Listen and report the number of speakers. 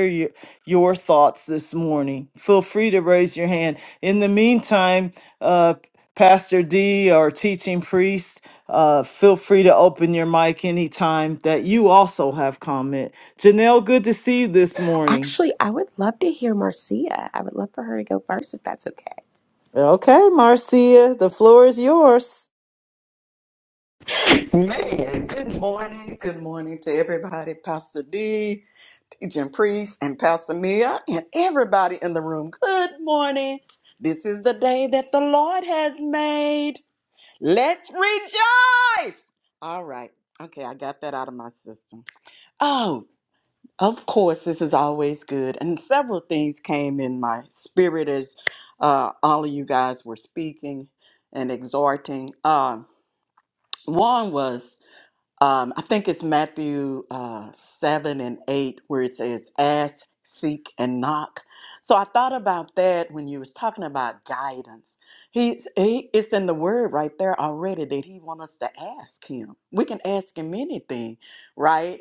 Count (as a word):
three